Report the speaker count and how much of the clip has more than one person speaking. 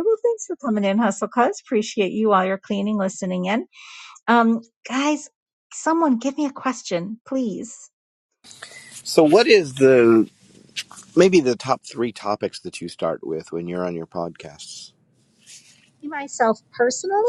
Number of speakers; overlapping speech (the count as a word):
two, no overlap